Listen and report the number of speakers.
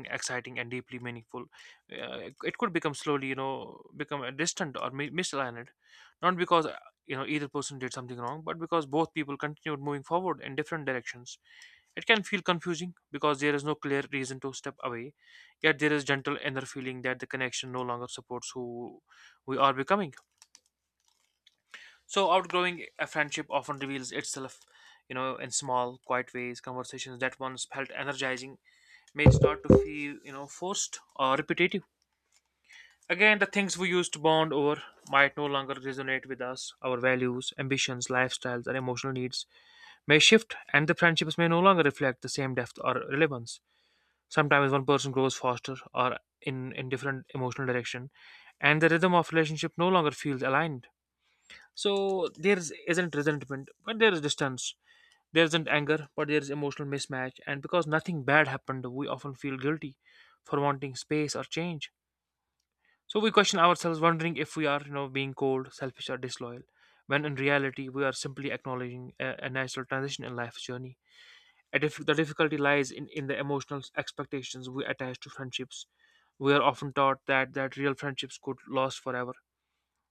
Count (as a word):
one